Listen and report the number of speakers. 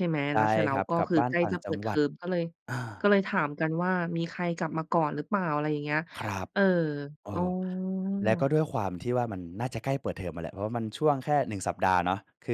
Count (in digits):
2